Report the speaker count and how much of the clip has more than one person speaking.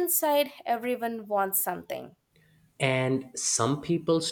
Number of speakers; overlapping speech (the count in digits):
2, no overlap